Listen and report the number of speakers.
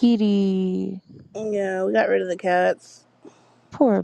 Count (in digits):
2